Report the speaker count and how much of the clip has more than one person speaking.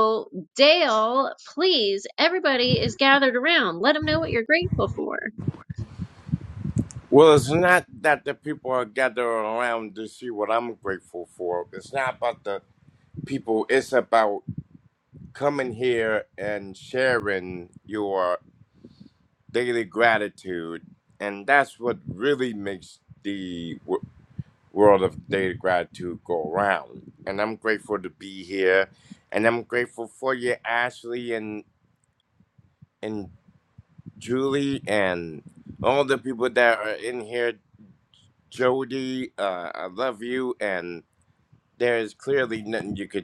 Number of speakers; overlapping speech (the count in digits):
2, no overlap